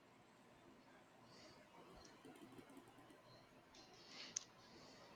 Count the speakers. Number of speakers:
zero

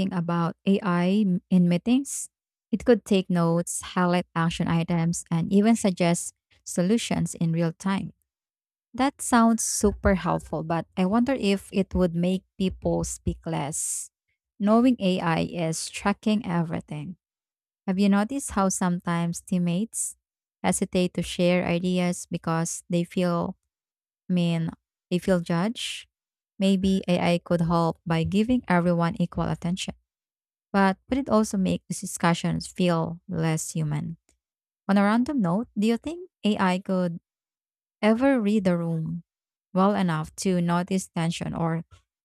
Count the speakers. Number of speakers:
one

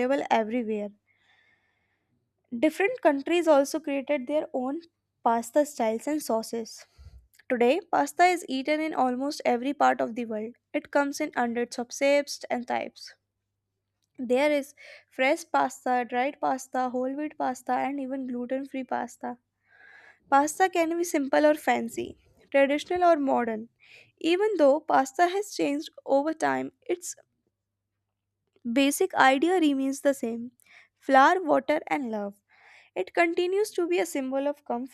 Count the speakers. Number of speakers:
one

